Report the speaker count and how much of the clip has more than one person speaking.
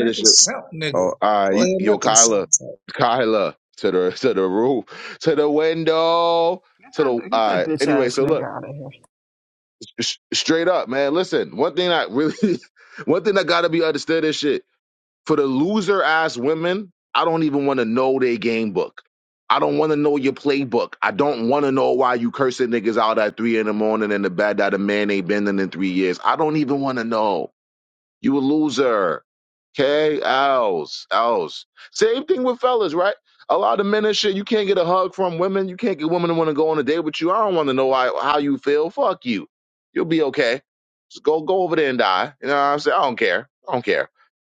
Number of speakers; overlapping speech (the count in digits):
3, about 7%